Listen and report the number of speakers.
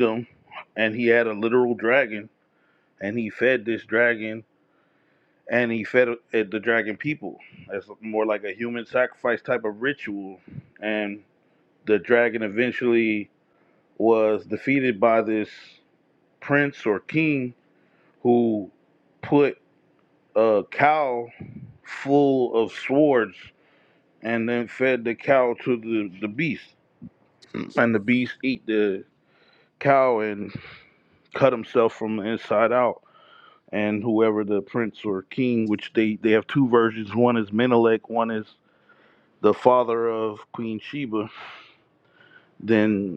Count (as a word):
one